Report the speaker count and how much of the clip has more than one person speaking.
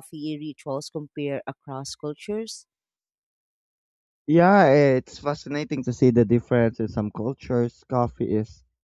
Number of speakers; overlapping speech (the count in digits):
2, no overlap